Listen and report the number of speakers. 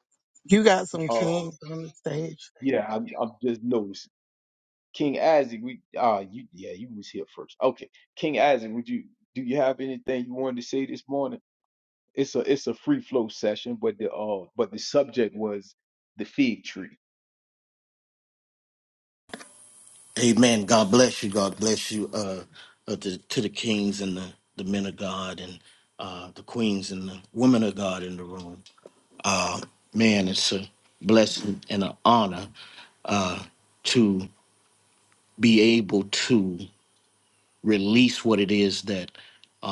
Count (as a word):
three